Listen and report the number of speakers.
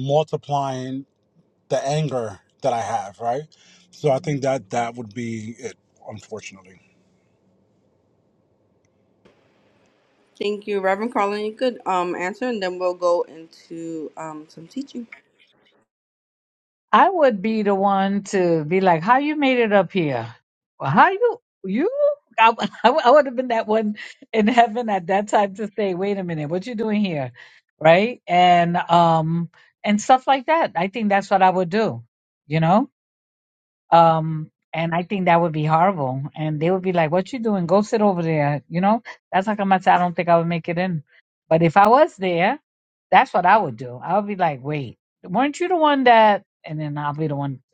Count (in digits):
3